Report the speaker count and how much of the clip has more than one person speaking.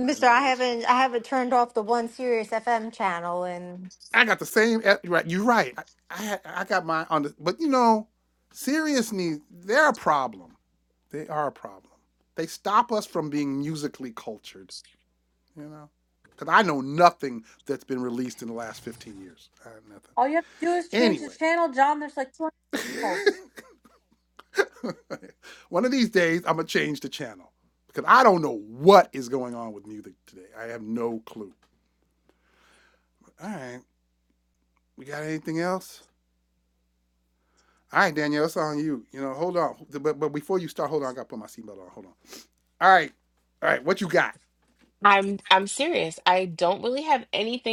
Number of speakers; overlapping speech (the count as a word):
four, about 2%